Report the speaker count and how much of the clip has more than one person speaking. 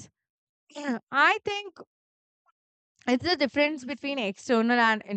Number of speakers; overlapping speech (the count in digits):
1, no overlap